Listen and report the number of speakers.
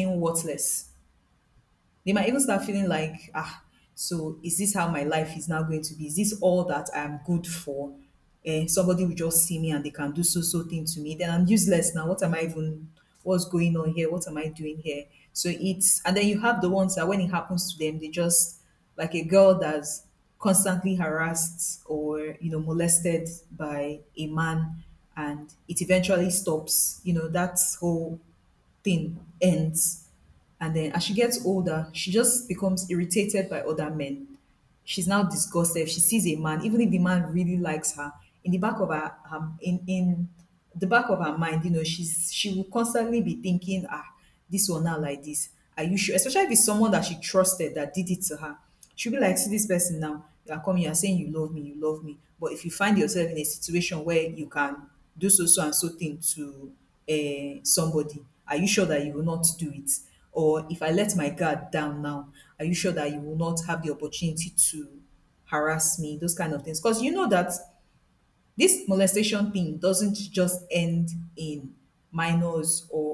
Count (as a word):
one